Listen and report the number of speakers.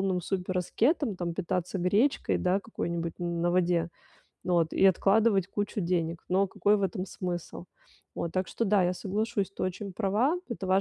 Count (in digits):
1